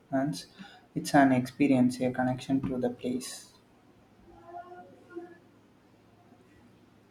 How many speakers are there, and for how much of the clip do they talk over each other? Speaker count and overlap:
1, no overlap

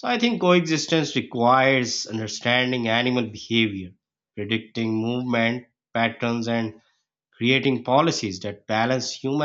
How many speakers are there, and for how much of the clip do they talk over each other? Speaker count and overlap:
1, no overlap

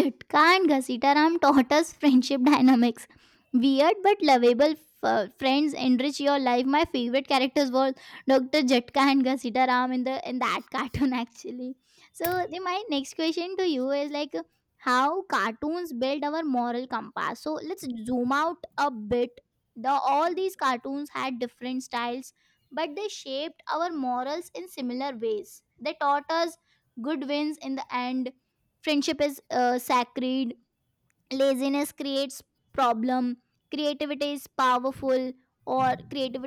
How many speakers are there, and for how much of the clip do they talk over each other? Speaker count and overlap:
1, no overlap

